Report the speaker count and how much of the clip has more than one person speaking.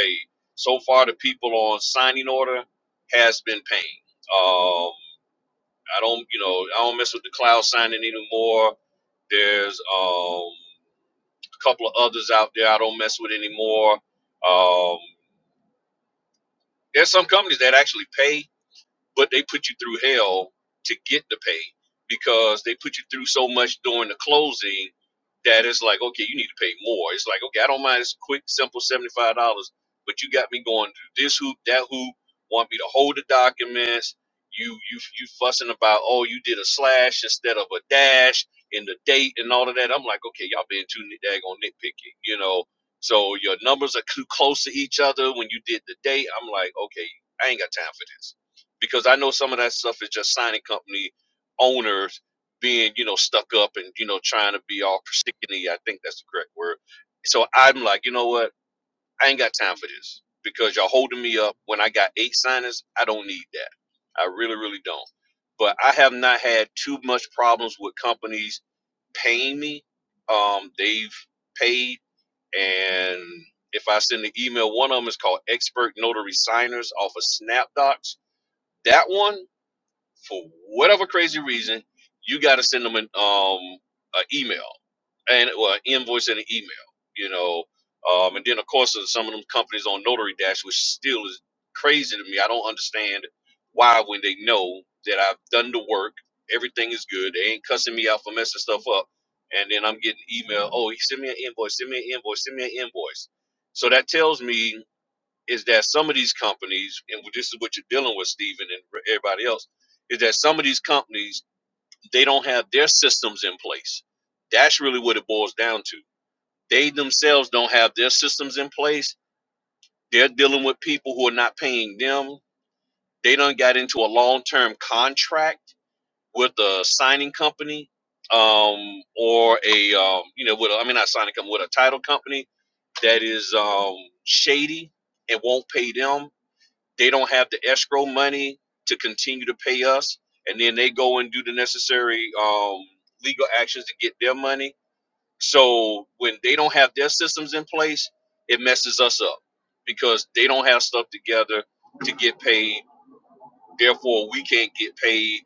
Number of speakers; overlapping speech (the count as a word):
one, no overlap